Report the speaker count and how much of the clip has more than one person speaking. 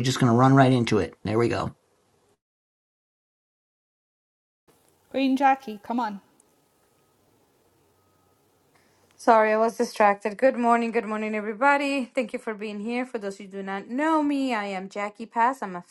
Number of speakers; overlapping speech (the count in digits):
3, no overlap